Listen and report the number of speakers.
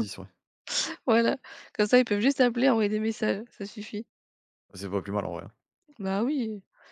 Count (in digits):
2